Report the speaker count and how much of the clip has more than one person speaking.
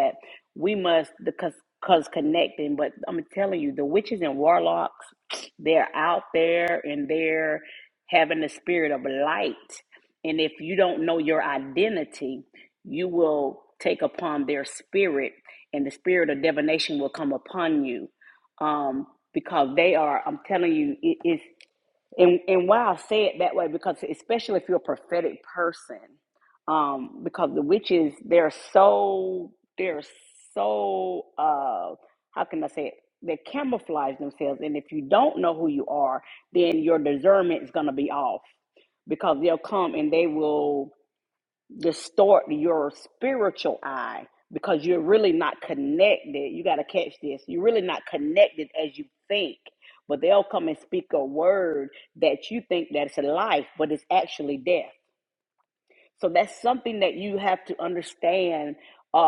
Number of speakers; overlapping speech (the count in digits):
1, no overlap